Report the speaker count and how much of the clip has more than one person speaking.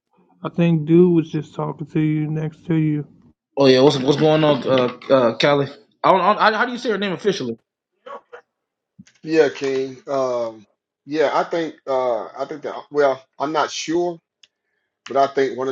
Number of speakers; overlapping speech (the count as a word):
three, no overlap